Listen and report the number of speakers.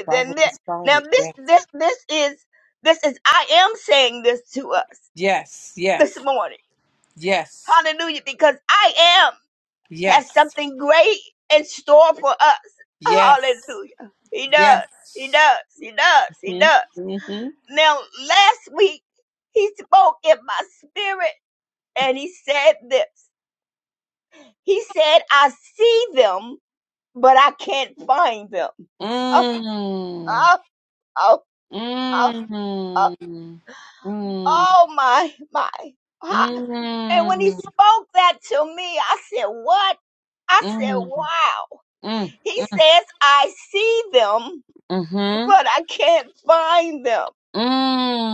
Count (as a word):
two